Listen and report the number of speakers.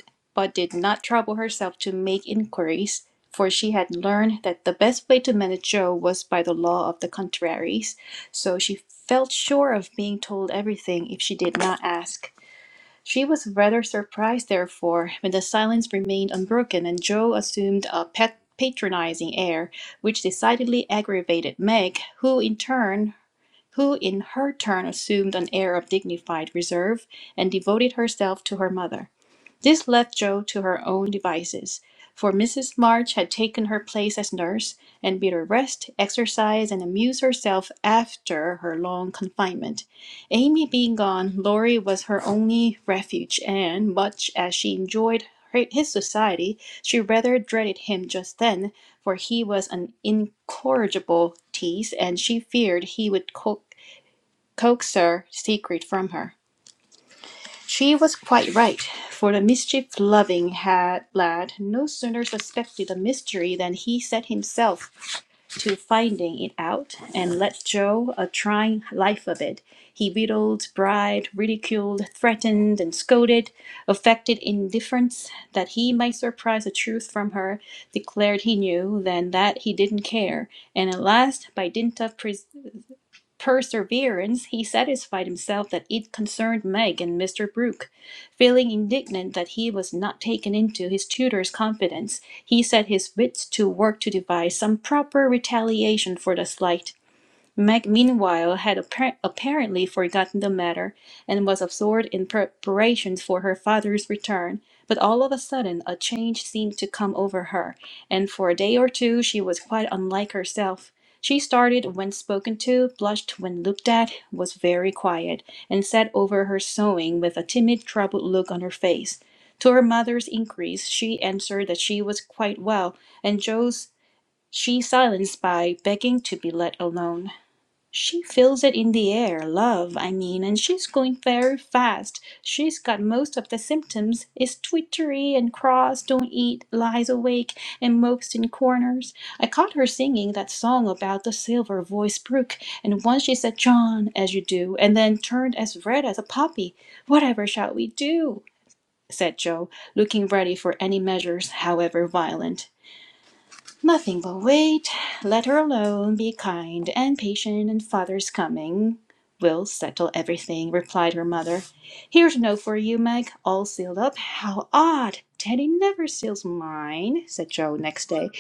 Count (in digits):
1